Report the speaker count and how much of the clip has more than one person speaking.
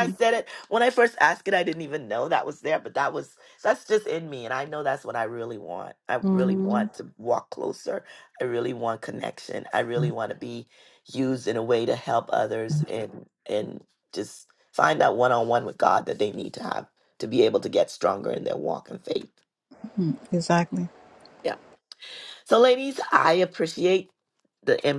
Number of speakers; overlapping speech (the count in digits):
2, about 3%